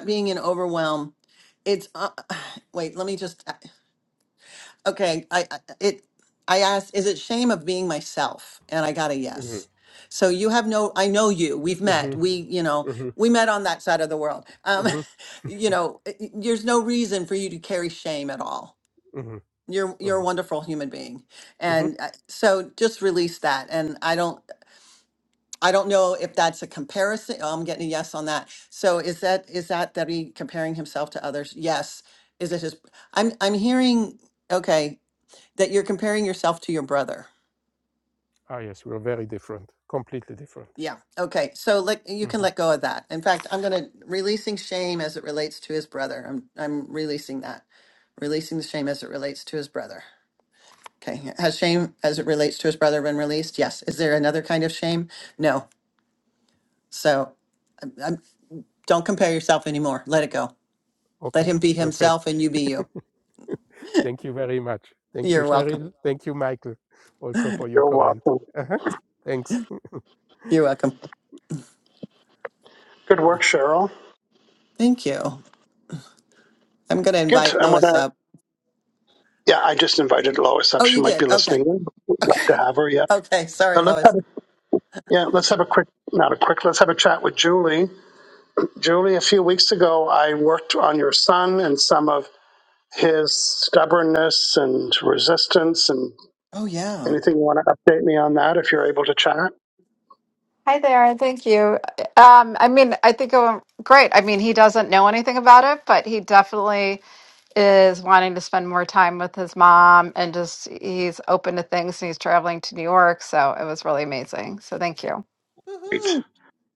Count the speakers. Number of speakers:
4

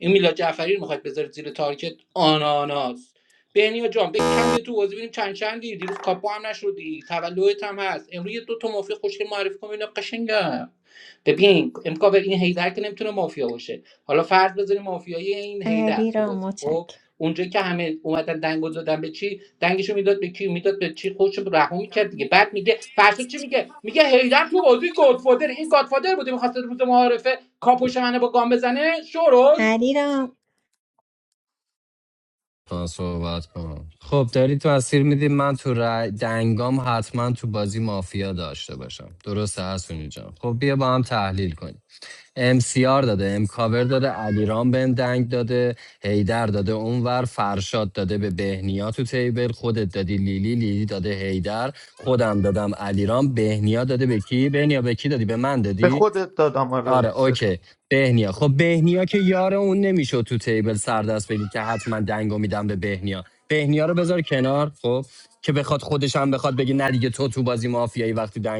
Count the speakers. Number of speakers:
4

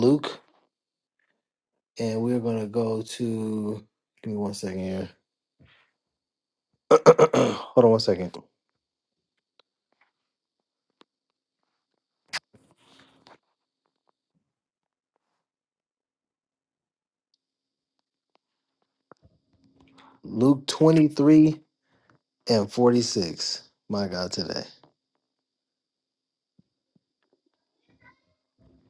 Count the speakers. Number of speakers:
1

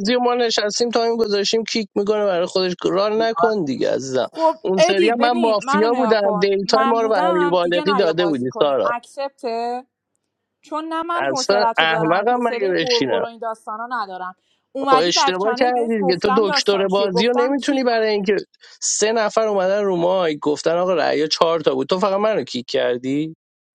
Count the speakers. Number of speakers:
2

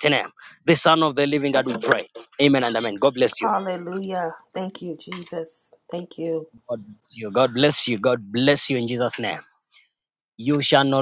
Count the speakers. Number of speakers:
2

